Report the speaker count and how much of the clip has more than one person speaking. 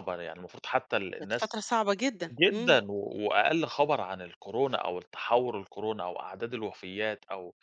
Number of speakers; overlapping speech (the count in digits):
2, about 10%